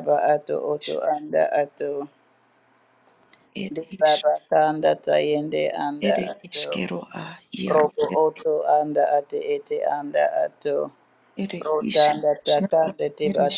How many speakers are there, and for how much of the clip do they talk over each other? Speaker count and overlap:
2, about 21%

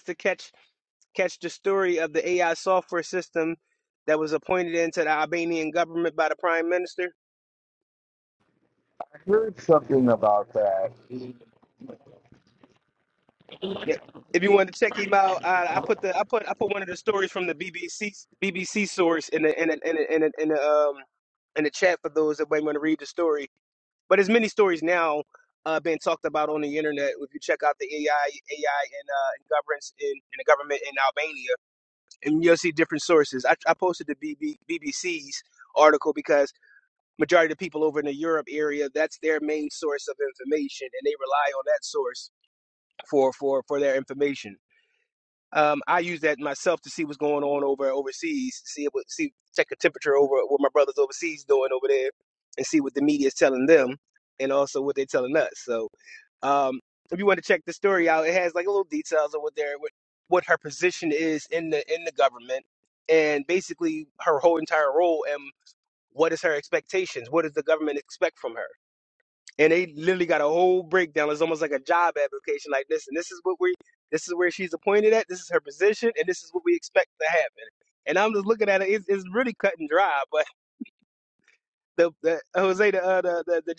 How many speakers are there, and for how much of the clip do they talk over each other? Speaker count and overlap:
2, no overlap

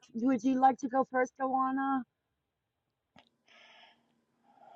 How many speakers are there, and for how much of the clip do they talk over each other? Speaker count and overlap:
1, no overlap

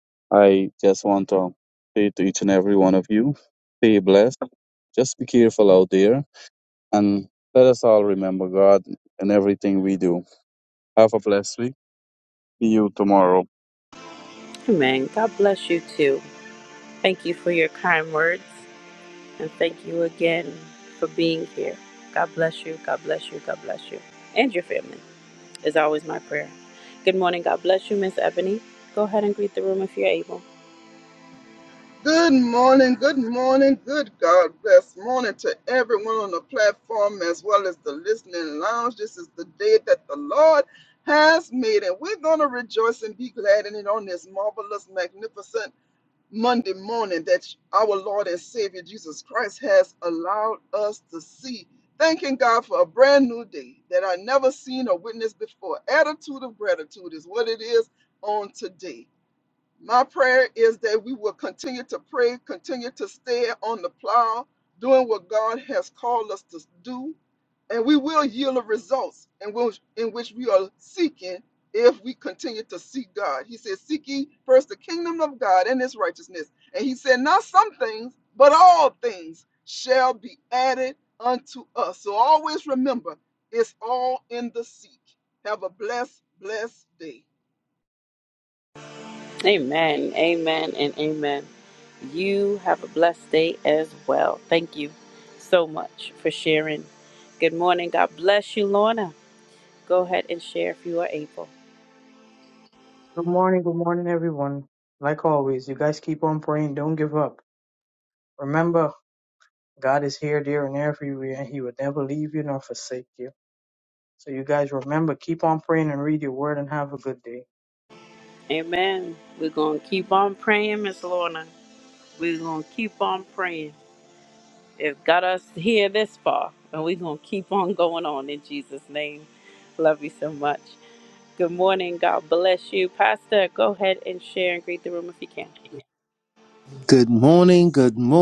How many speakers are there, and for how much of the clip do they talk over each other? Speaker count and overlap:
5, no overlap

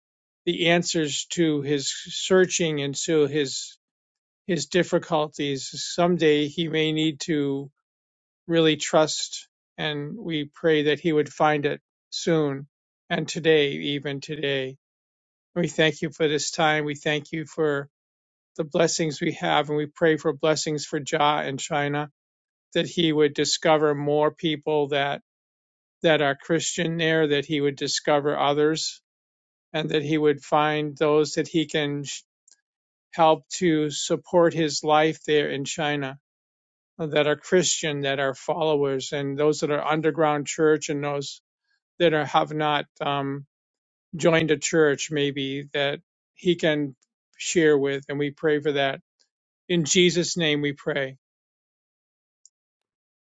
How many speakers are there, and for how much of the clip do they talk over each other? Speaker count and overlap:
1, no overlap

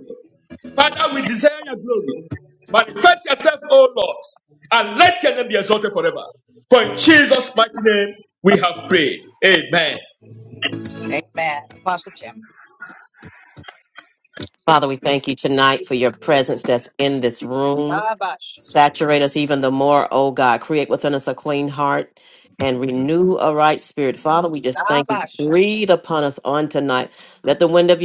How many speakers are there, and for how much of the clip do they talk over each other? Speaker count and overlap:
3, about 3%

